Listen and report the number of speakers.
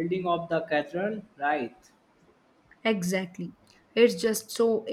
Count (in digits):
2